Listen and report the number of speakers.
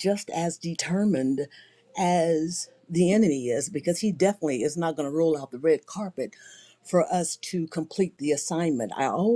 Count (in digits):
1